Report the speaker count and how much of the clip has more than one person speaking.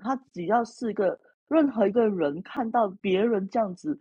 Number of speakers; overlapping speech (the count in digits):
1, no overlap